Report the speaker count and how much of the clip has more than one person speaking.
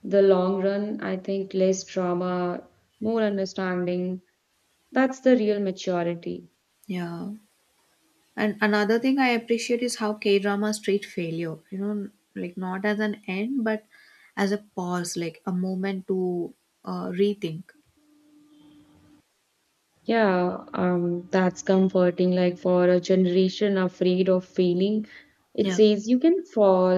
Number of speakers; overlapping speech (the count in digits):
2, about 1%